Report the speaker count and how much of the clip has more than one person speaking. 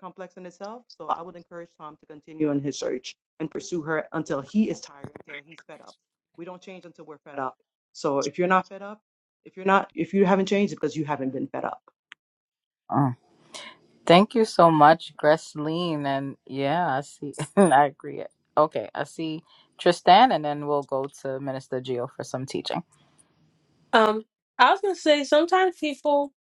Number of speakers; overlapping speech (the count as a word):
three, no overlap